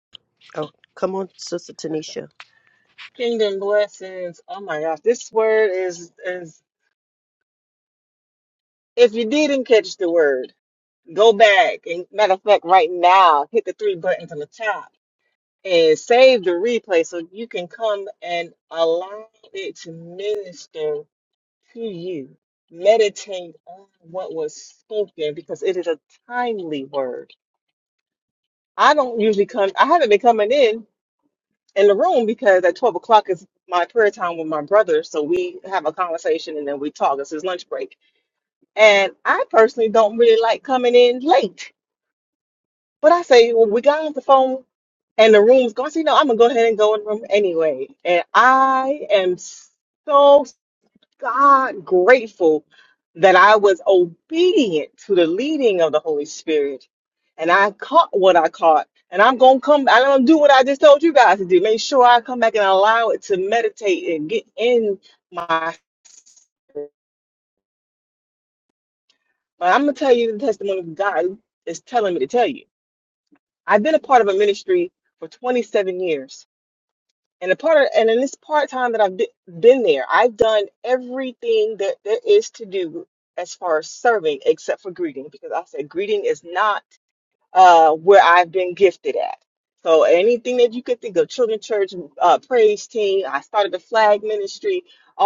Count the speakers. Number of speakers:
2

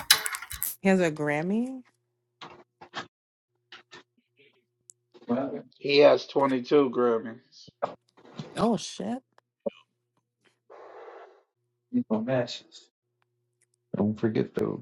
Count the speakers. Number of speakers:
3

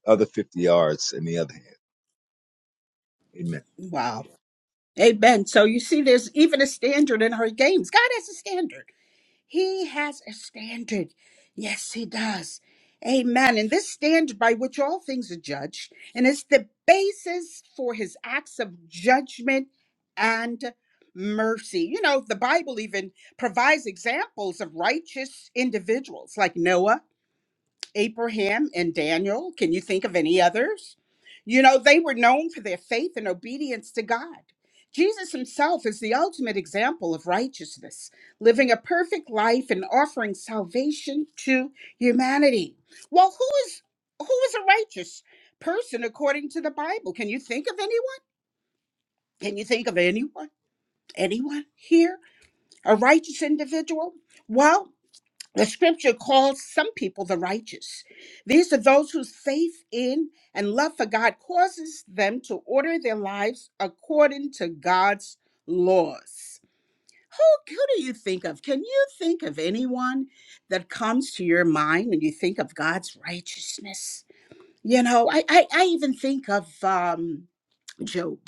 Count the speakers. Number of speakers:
2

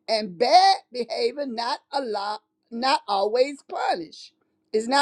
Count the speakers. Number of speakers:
1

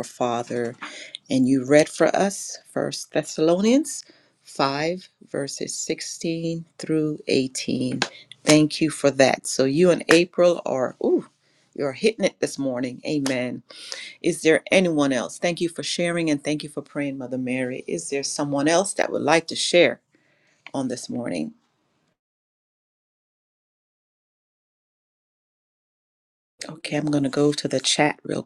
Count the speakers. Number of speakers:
1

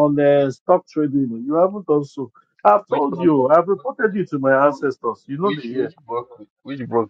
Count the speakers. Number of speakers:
2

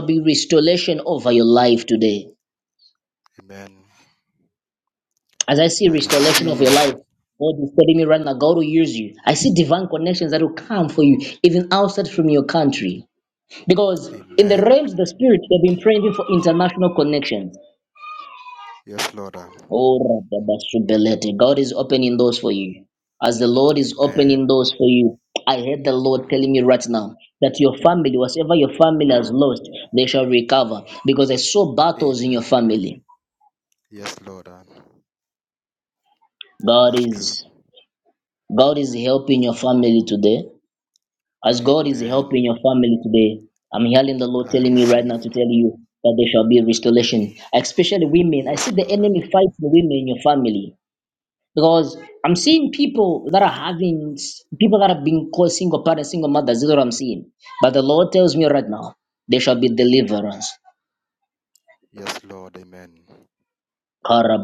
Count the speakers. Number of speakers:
2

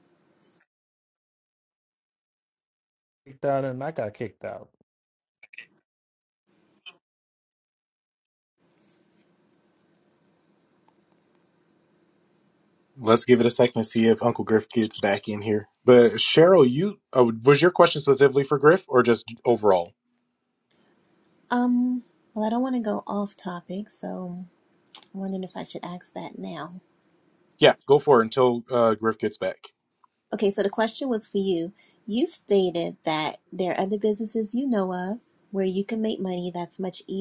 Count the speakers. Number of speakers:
3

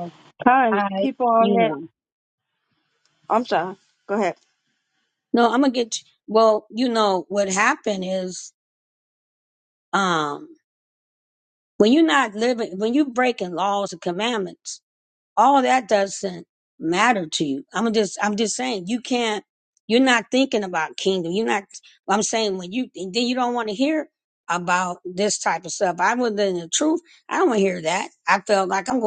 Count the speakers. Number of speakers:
2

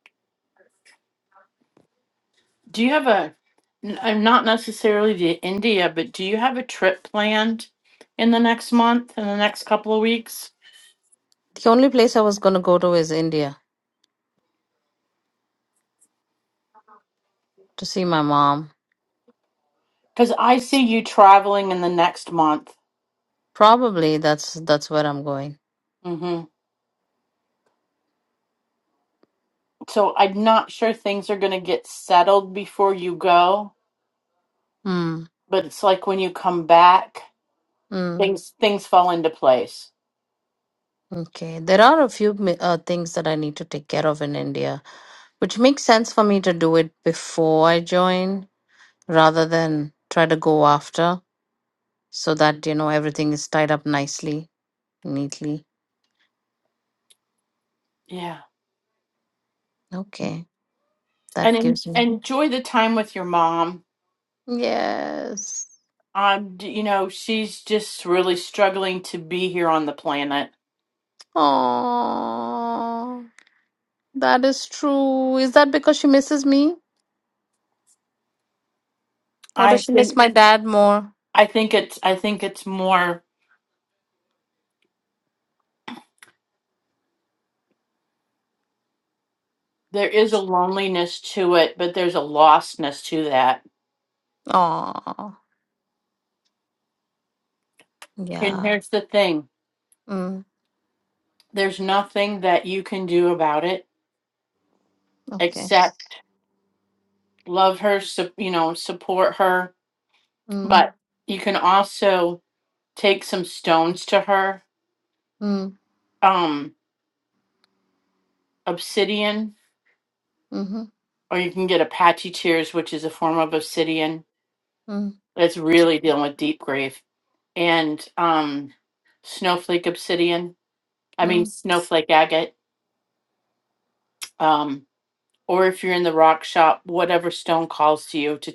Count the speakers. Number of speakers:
2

